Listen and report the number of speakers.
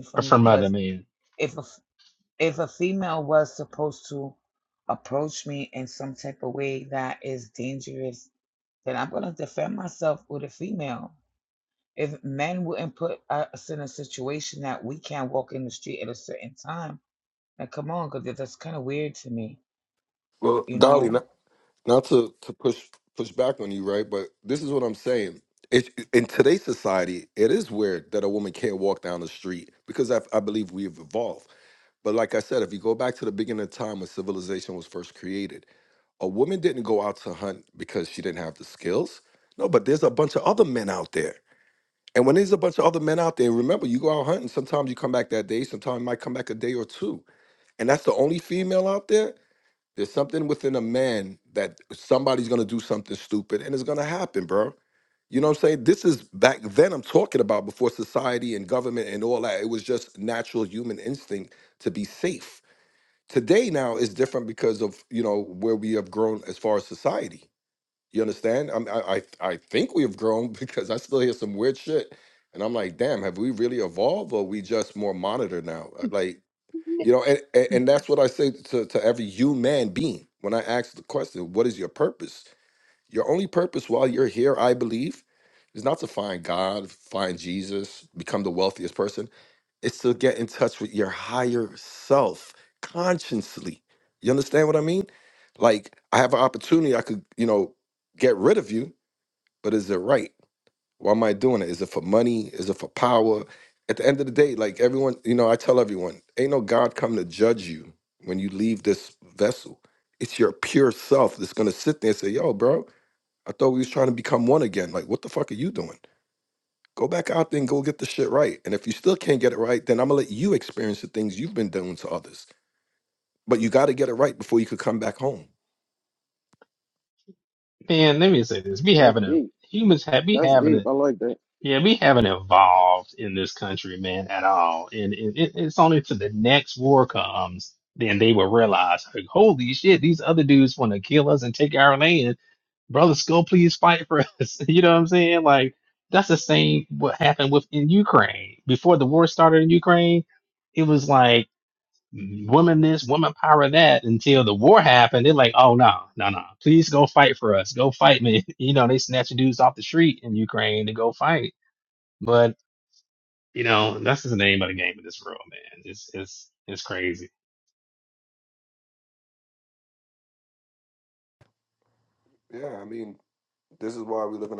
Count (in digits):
4